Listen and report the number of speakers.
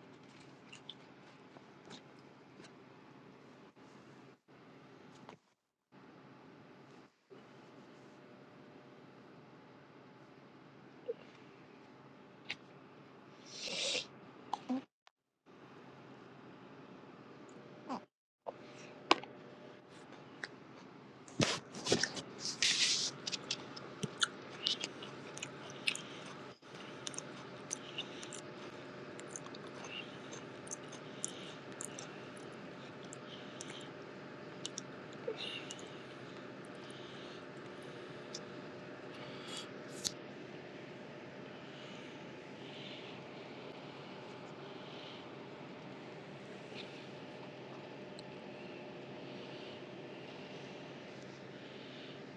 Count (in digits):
0